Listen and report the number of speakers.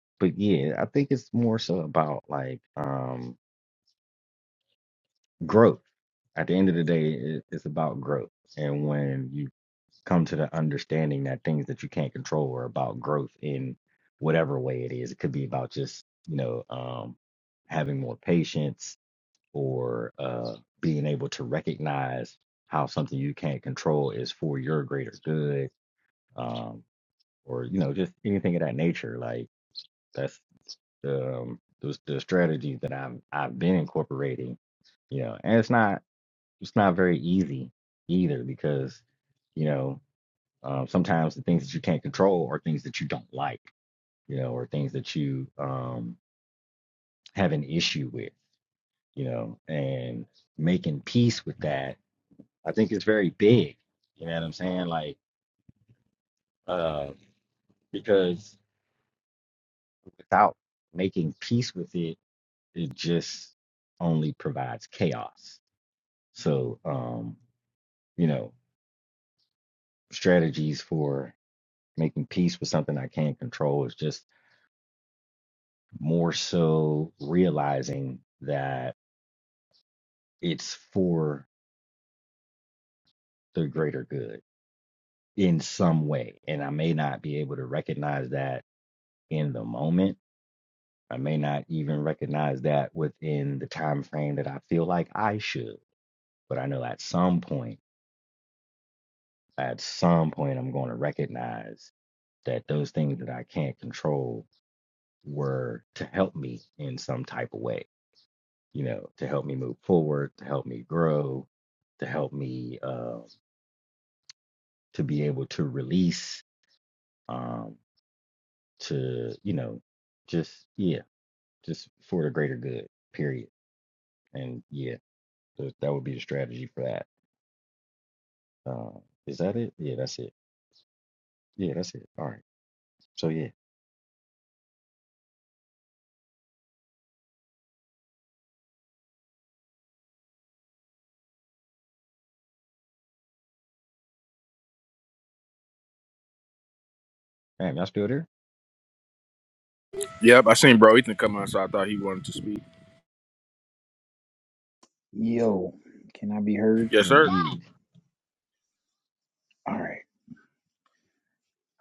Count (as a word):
three